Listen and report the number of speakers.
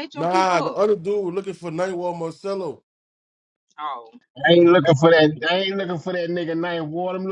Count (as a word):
three